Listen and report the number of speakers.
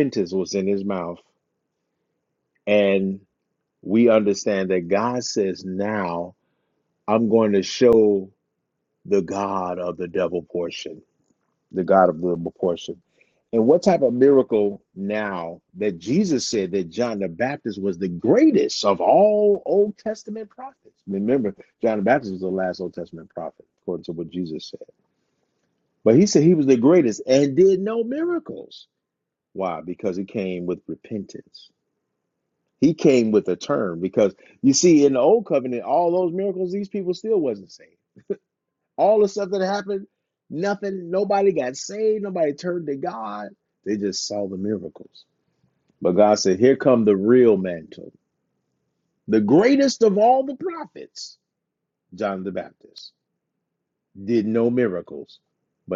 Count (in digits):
1